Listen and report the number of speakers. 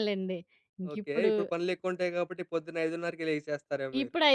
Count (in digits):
2